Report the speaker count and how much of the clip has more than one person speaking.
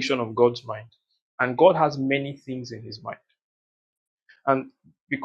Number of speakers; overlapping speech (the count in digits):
1, no overlap